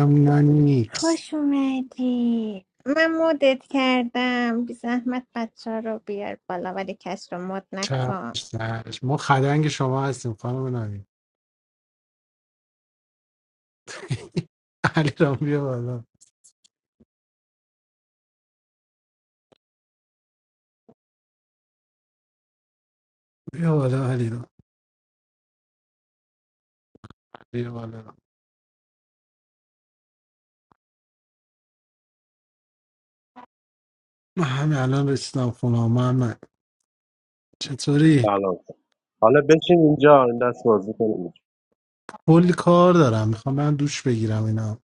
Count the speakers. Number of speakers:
3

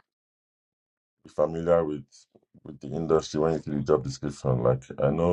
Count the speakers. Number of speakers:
1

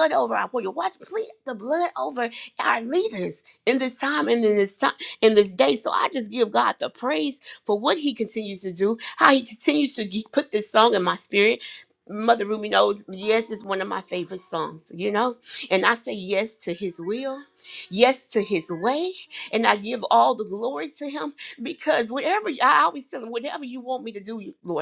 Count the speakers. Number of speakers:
1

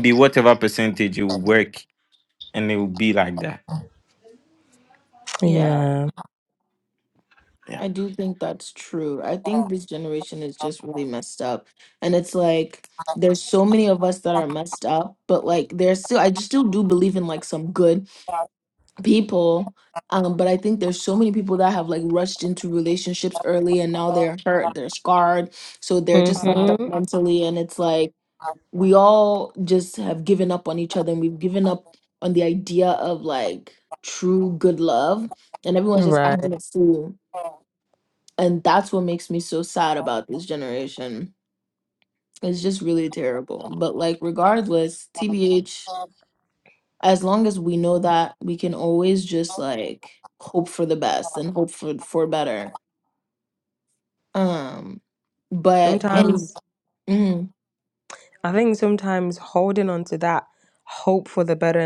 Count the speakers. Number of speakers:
3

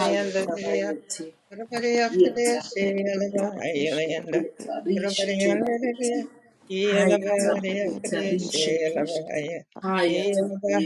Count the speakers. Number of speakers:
3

